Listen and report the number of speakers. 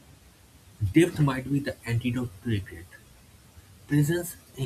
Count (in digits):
1